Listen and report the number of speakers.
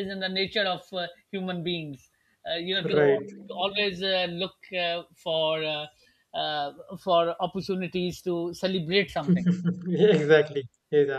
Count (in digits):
2